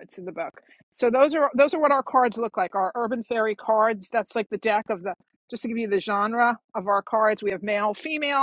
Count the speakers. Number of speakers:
one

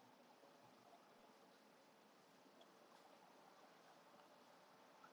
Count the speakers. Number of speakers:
zero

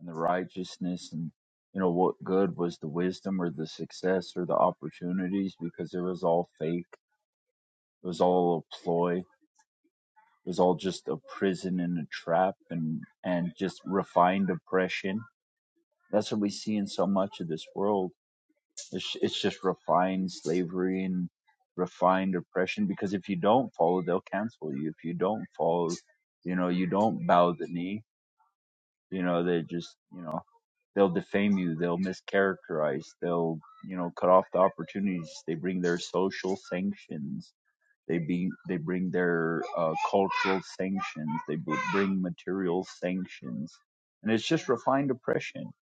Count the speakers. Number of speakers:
one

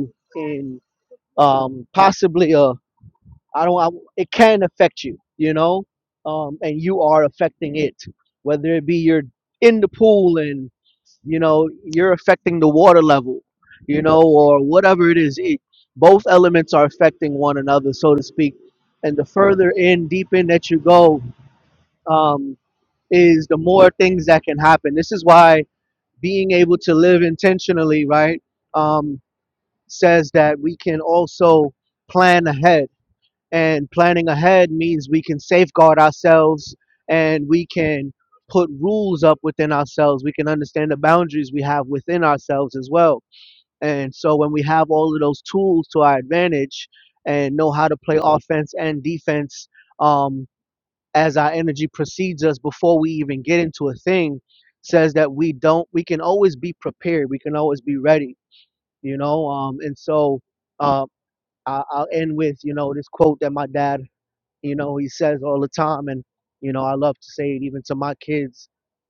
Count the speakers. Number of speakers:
one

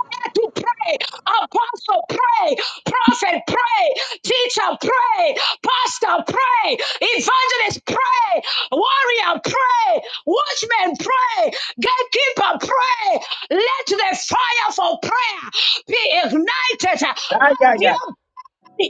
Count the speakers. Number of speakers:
one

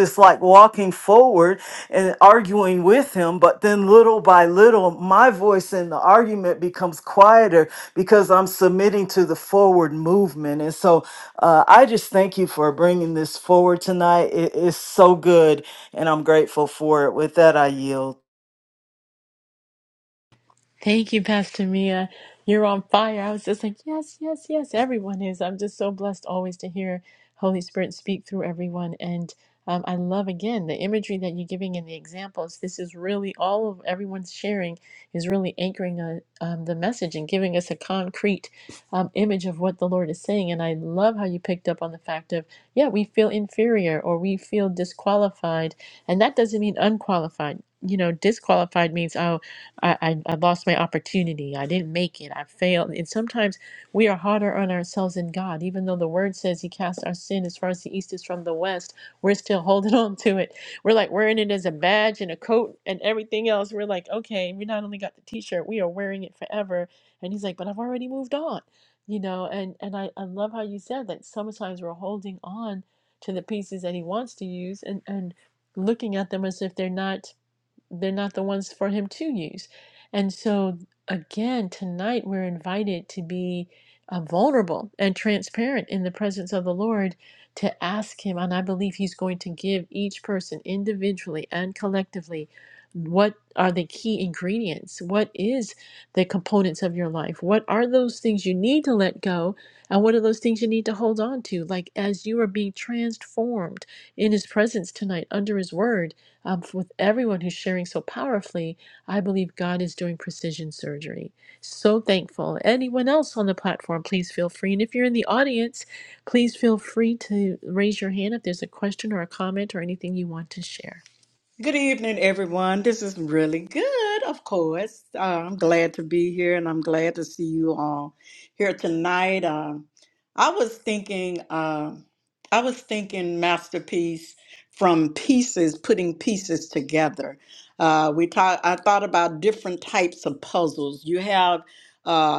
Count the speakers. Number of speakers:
three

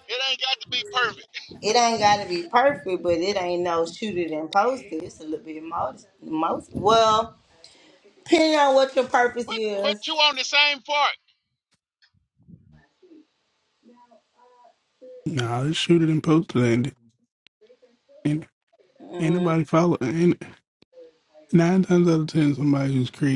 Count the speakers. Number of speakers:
three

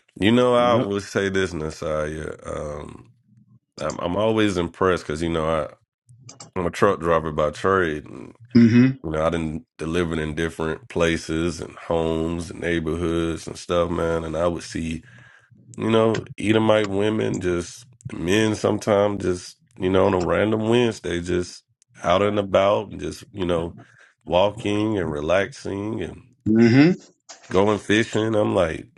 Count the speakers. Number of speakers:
two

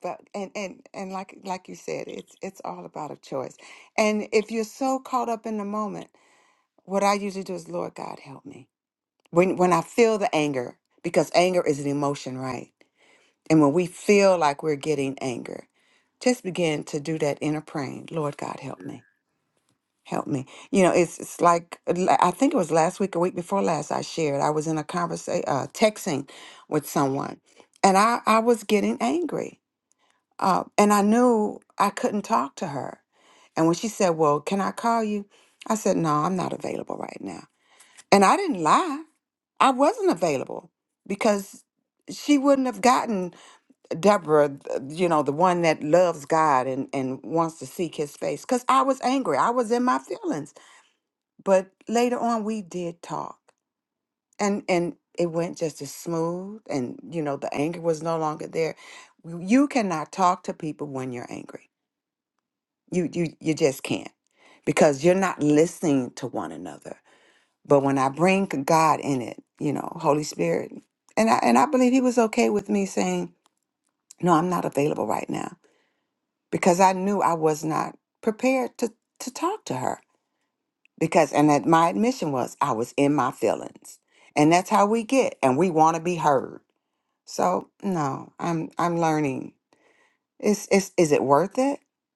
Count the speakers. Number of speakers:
one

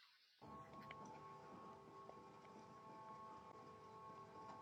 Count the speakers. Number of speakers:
zero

